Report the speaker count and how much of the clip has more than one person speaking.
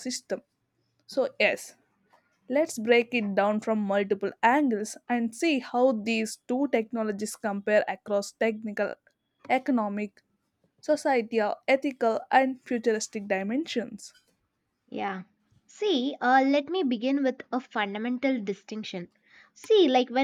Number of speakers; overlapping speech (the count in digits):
2, no overlap